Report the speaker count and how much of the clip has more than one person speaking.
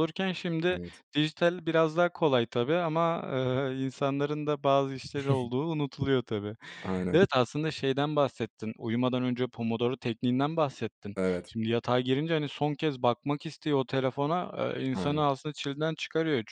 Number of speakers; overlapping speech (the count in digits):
2, about 3%